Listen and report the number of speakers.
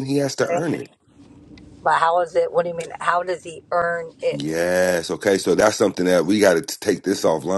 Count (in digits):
2